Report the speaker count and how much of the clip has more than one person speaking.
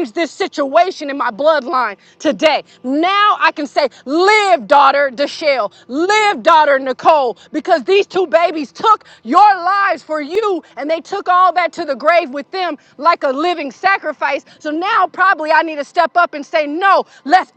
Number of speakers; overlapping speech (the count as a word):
one, no overlap